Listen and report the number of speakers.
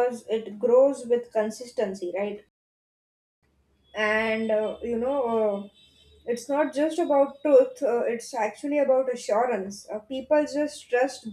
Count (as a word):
one